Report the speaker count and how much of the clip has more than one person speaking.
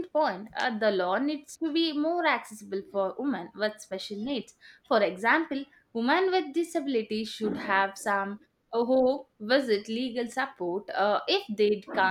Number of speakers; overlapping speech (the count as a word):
one, no overlap